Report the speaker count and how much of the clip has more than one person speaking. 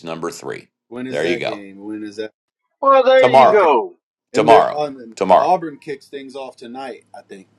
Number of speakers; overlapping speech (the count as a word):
three, about 22%